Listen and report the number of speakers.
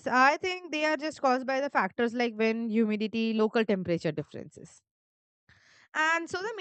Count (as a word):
one